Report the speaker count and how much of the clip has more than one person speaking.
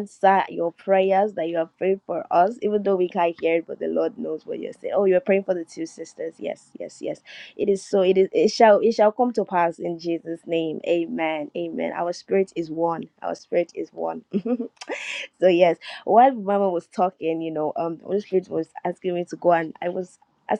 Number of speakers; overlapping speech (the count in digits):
1, no overlap